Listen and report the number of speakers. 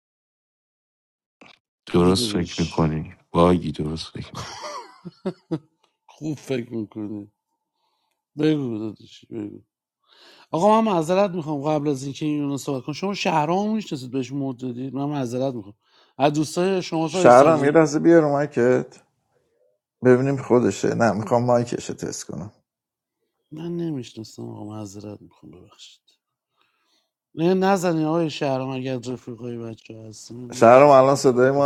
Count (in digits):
3